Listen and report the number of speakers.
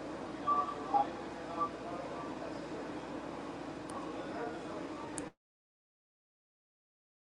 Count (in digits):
0